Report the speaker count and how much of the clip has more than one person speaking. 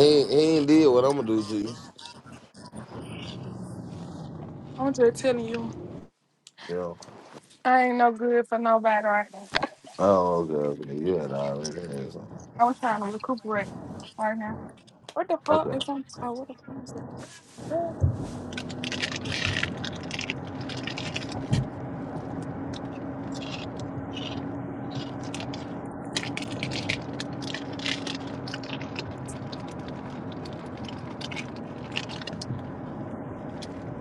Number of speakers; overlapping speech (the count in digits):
2, about 1%